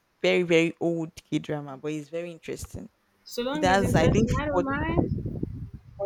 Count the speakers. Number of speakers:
two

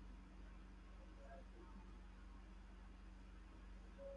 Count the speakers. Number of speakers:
zero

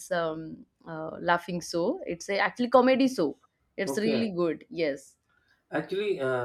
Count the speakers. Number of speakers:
two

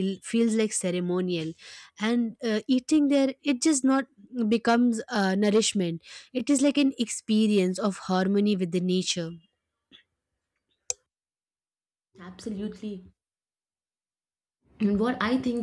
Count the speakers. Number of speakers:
two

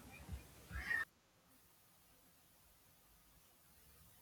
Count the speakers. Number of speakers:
zero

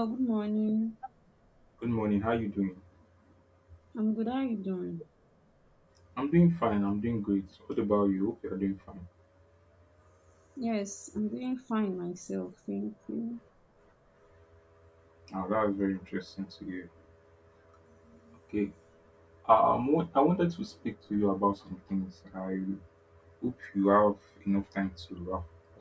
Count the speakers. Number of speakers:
two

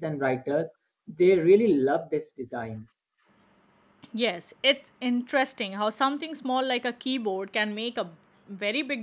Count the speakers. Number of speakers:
two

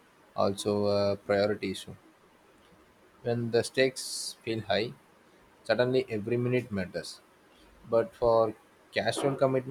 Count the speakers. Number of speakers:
one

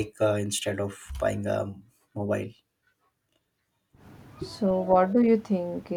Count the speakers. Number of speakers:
two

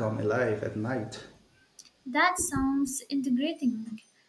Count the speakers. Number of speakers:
two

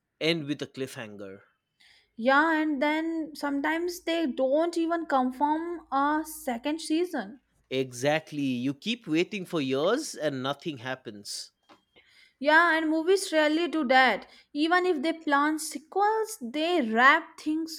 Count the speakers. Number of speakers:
two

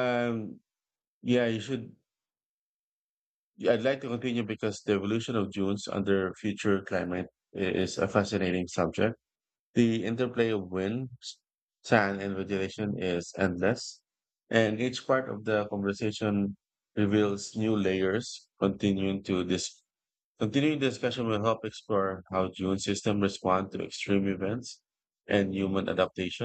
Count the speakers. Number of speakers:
one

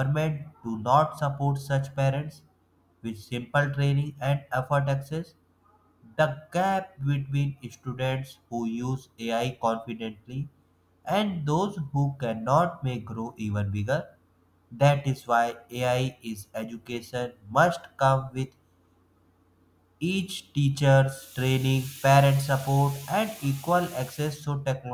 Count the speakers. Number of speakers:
one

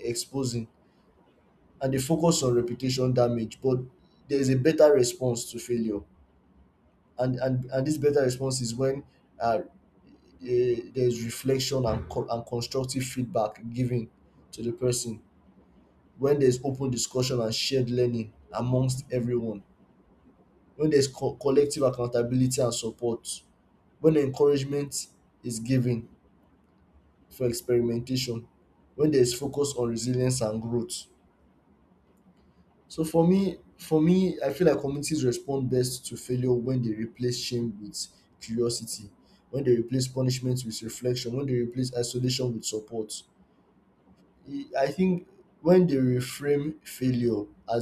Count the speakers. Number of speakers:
one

